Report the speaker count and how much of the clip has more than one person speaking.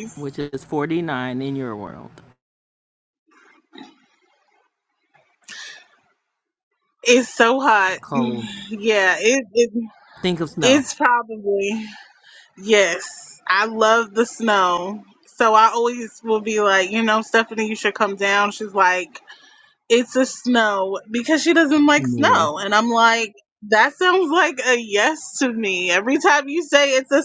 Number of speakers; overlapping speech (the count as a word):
two, about 5%